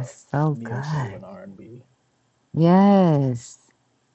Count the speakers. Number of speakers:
2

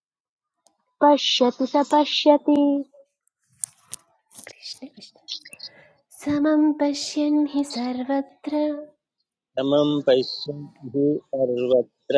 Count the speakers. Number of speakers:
3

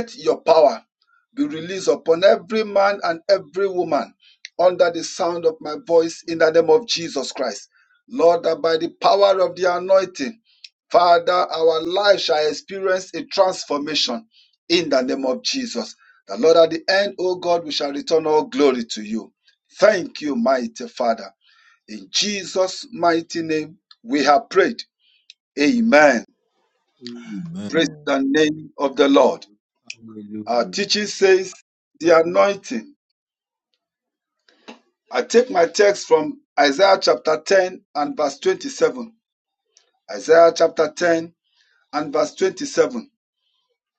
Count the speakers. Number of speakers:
2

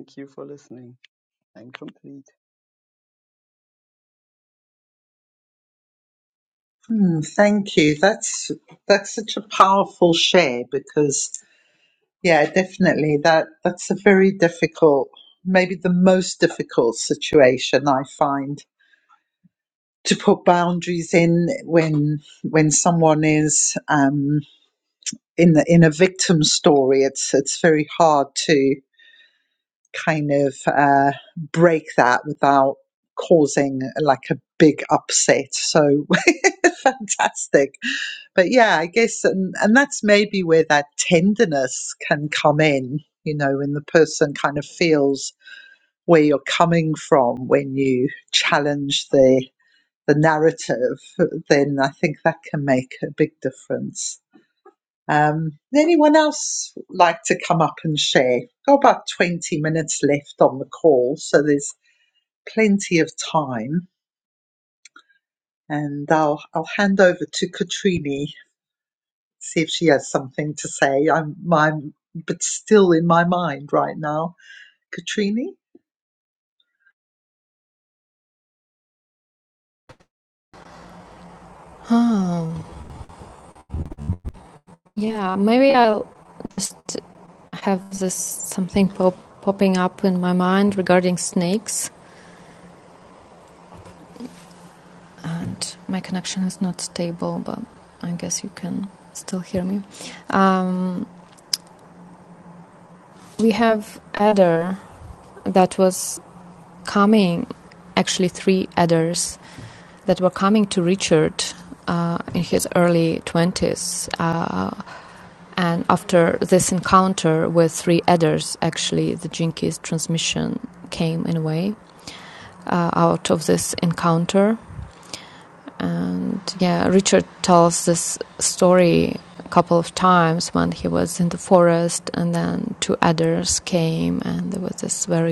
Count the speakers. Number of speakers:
3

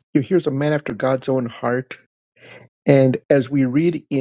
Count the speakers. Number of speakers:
1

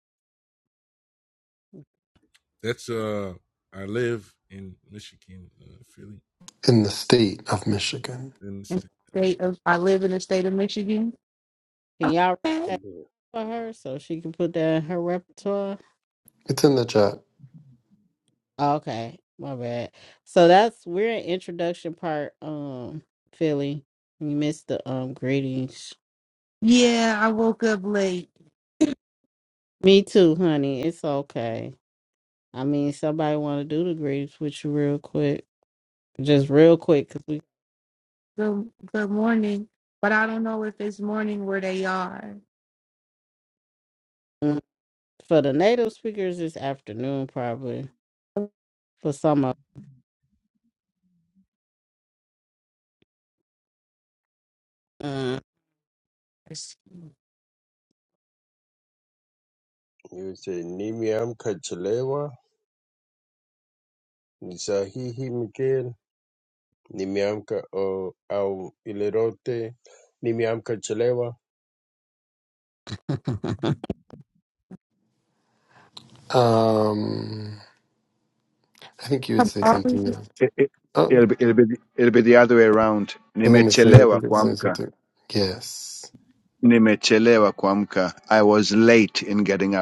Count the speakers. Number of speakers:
6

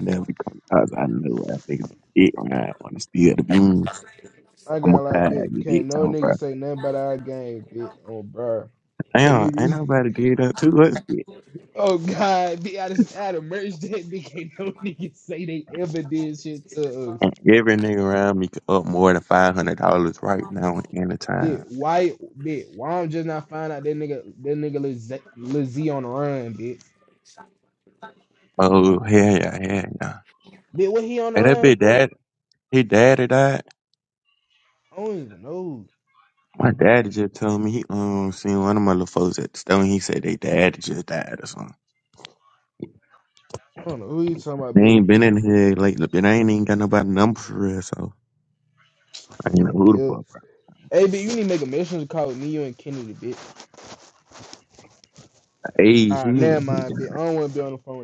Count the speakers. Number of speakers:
2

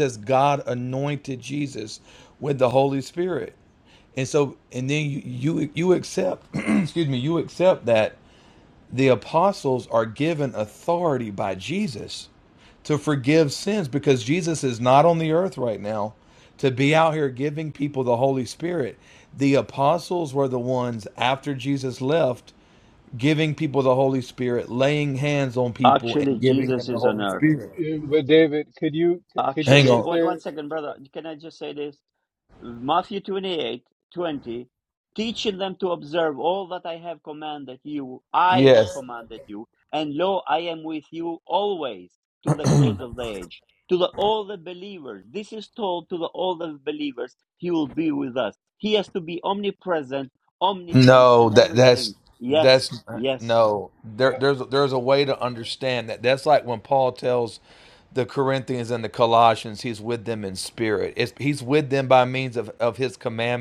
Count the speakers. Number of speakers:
3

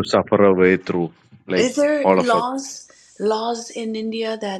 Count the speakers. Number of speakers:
2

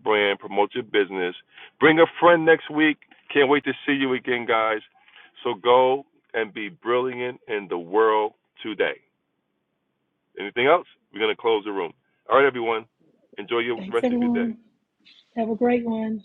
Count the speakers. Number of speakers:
2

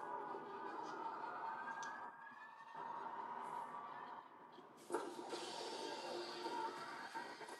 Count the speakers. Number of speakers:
0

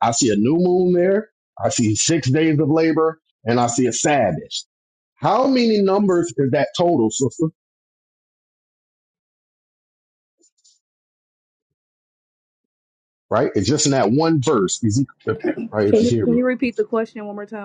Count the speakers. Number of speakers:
2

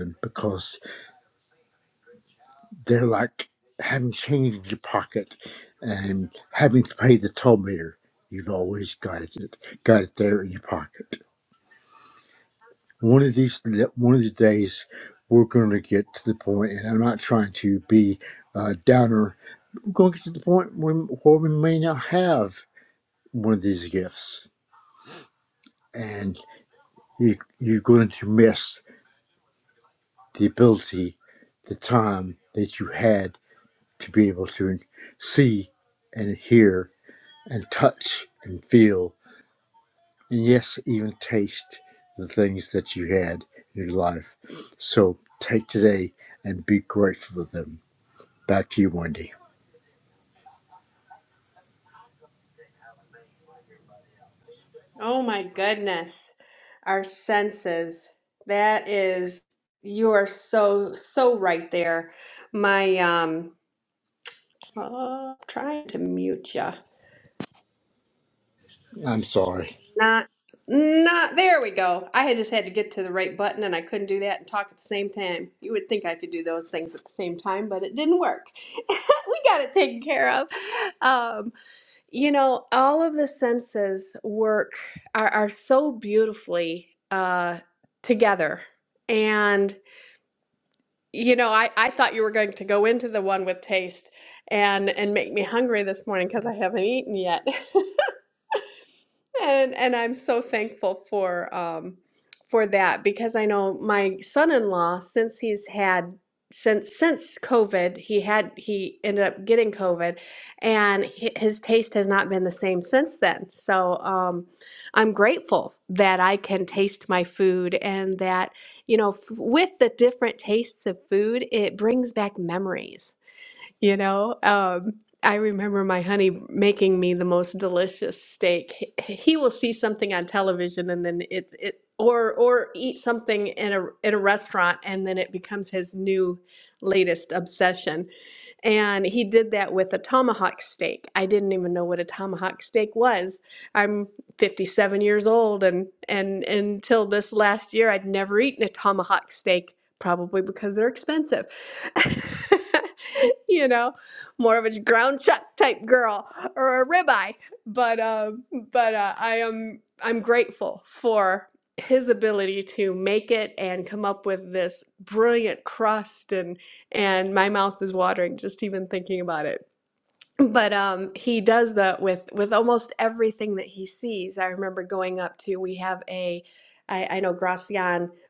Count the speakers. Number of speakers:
2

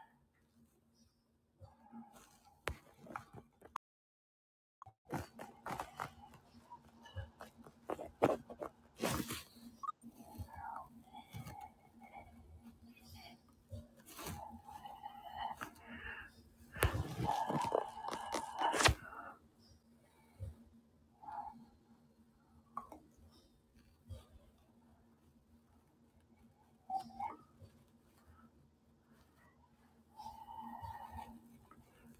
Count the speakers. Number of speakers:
0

